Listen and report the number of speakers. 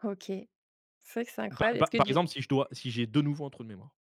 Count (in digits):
2